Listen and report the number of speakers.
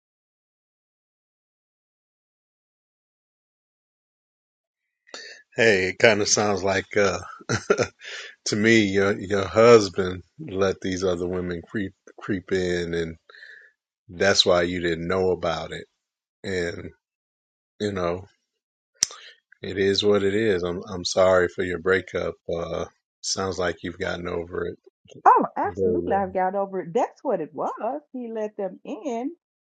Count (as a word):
two